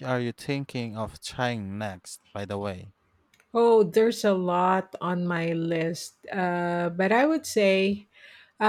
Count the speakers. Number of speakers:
two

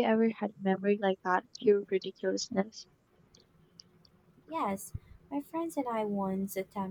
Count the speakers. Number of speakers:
two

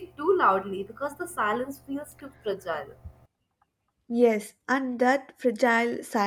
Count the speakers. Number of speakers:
two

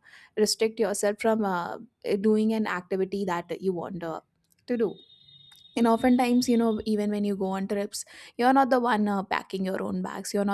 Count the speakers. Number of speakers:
one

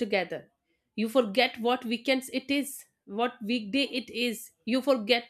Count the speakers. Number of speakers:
one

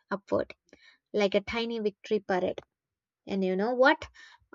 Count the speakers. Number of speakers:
one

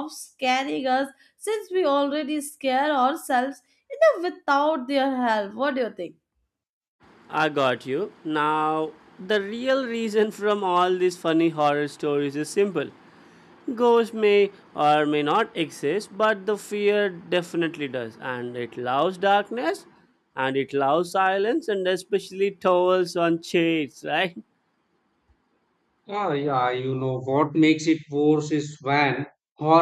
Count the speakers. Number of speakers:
three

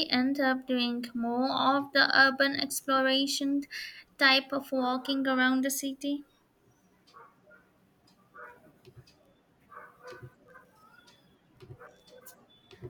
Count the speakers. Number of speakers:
one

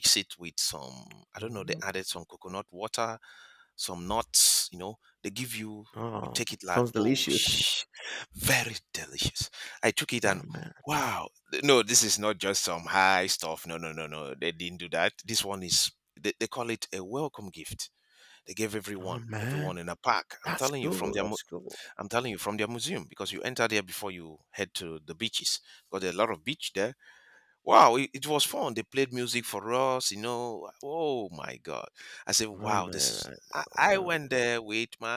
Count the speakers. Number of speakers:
two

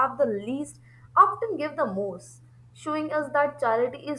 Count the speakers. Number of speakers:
one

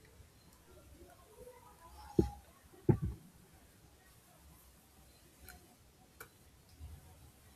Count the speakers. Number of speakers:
zero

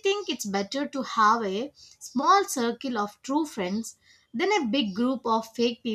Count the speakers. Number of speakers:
one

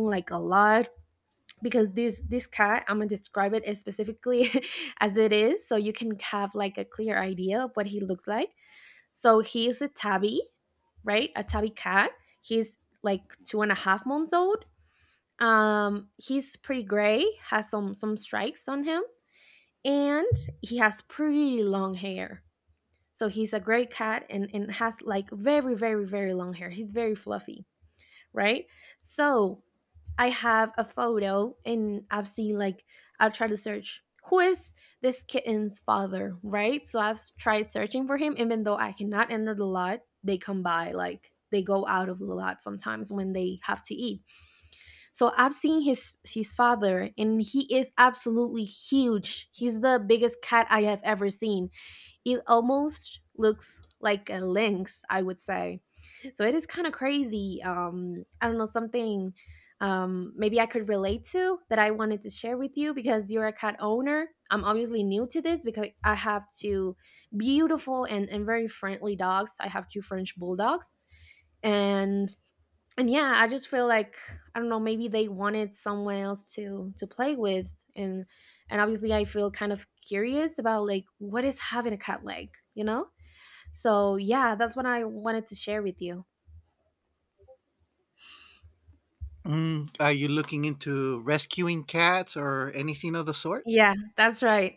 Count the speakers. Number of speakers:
two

